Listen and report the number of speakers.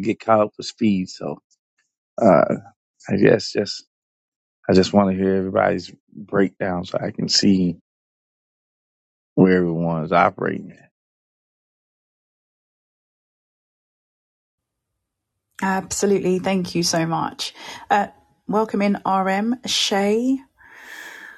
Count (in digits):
2